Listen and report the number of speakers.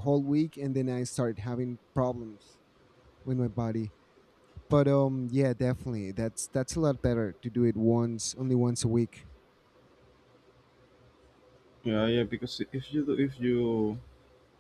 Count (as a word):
two